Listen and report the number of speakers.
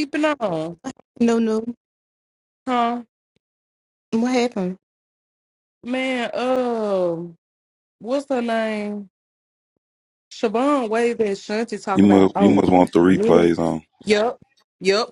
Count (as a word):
three